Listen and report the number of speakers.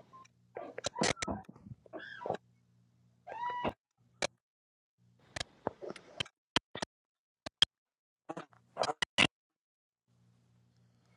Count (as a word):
zero